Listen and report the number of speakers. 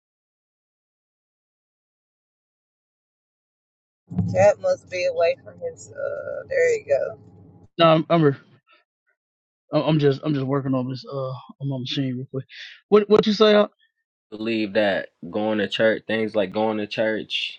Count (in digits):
3